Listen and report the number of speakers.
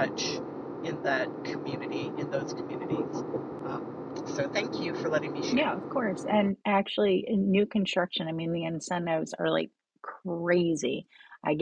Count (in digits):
2